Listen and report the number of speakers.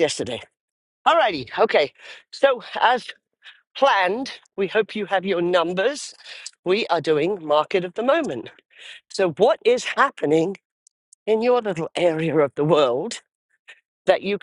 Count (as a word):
one